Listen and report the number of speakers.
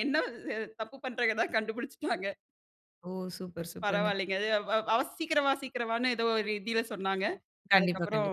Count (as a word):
two